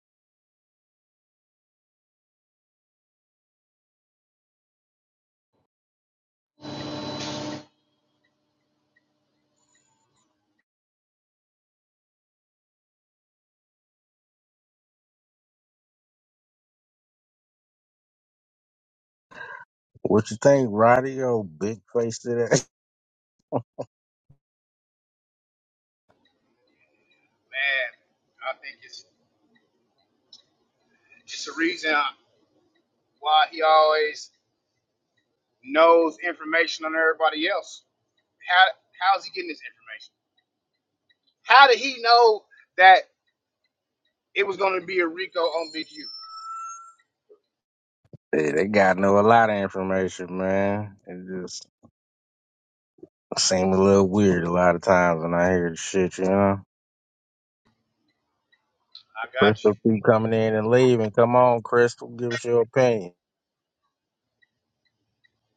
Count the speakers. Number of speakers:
2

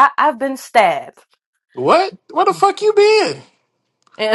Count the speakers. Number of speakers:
2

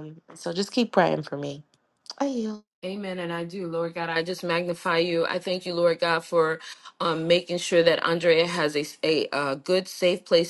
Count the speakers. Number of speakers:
2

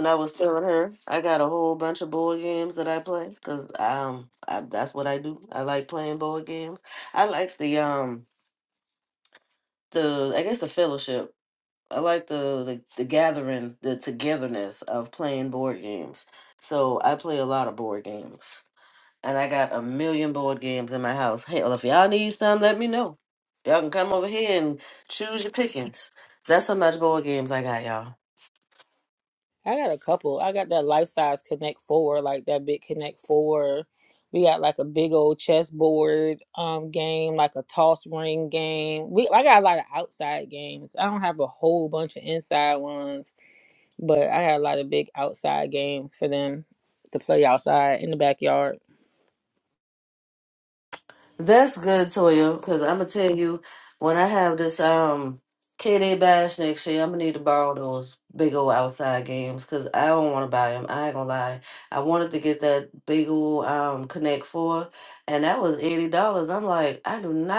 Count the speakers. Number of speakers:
2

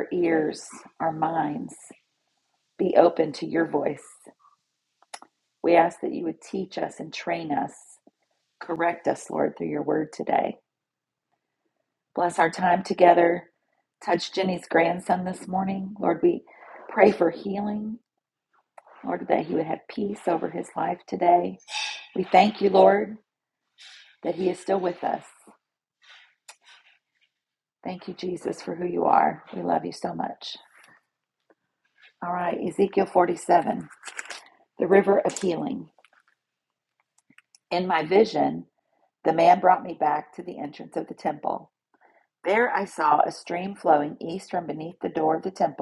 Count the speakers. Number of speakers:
1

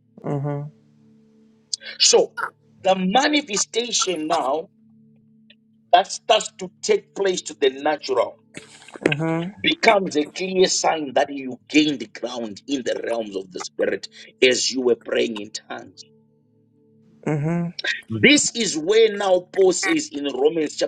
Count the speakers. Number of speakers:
2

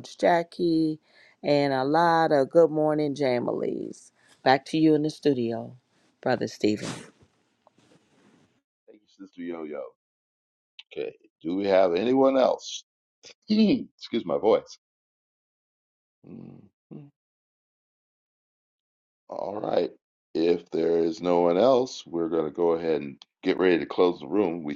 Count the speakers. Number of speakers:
2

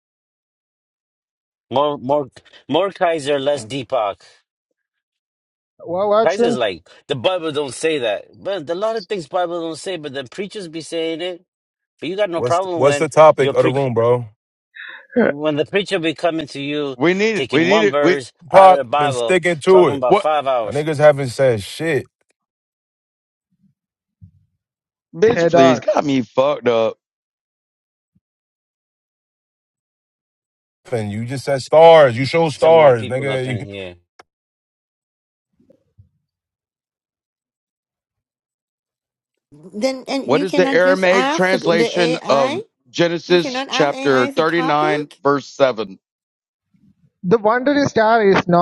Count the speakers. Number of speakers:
5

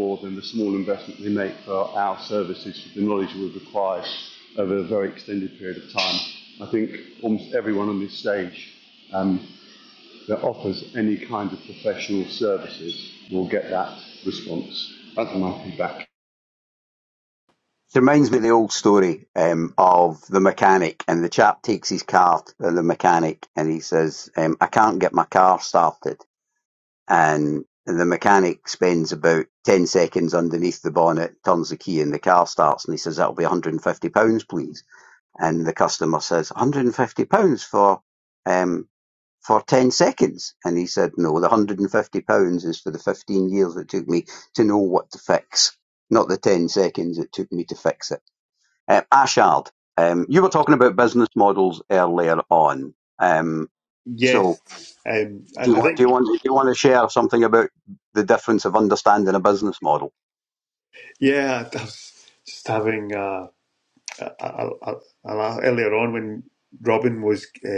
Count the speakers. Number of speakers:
3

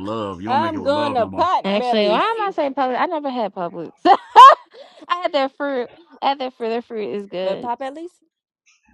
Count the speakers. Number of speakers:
3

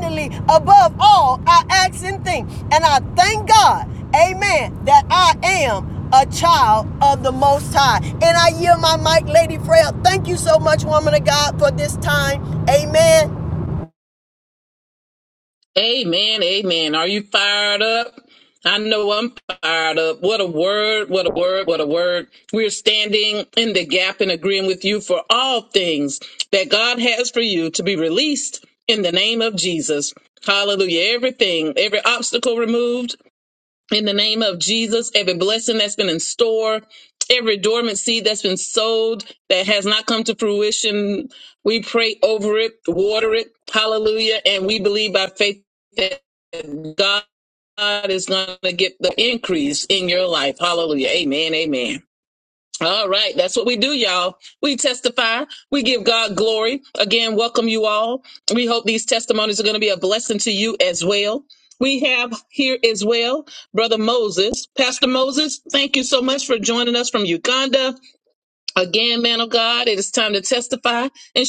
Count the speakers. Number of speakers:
2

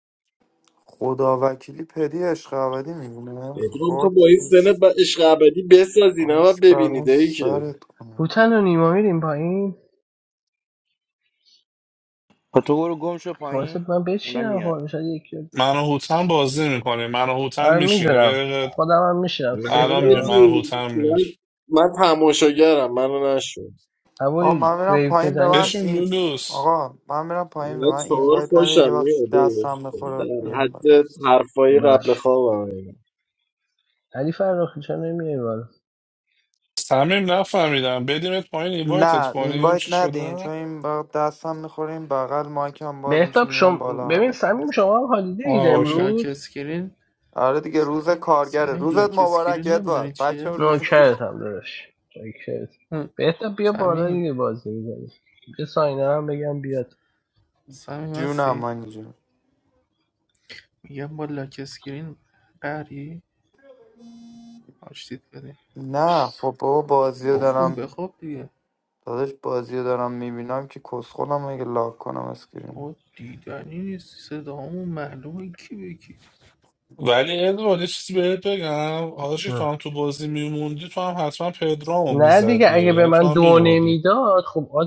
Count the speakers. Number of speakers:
6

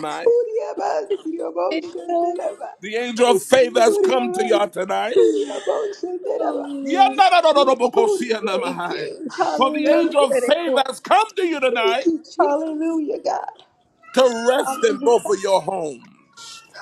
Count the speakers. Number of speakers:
3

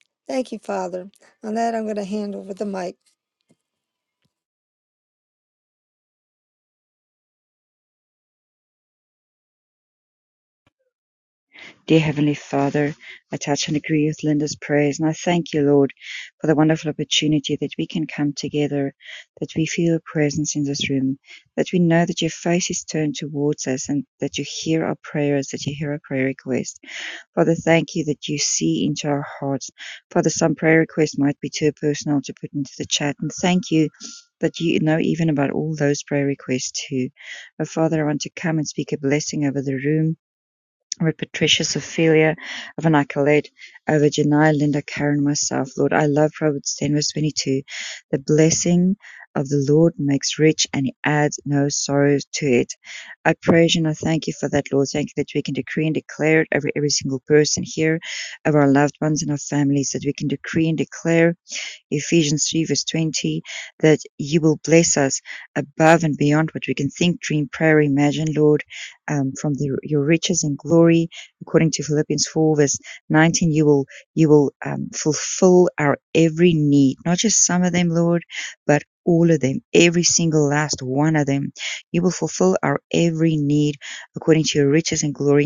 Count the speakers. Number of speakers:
2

